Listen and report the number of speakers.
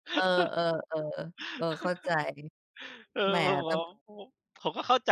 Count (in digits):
2